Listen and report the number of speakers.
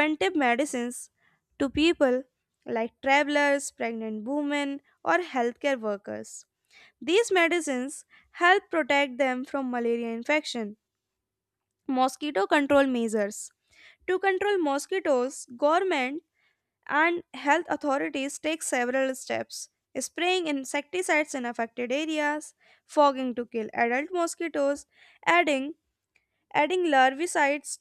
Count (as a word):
one